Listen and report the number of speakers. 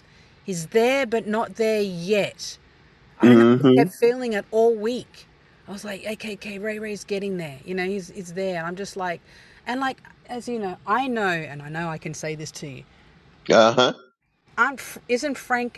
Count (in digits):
2